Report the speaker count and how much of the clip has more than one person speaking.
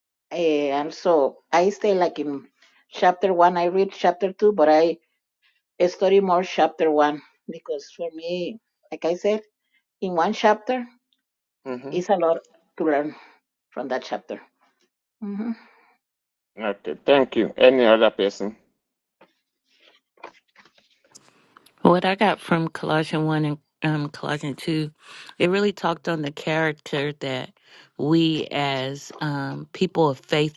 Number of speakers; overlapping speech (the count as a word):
three, under 1%